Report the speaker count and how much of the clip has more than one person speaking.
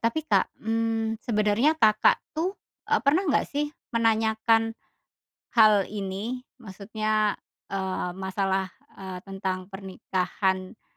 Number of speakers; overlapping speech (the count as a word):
one, no overlap